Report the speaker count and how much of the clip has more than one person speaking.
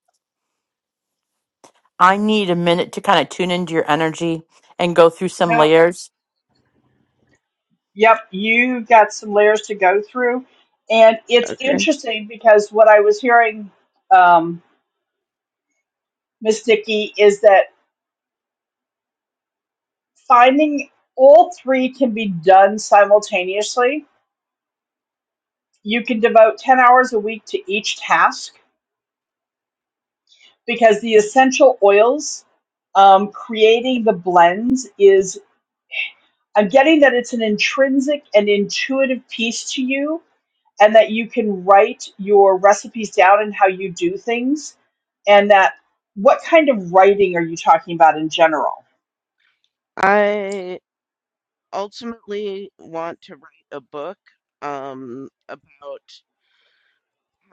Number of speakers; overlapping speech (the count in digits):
3, about 1%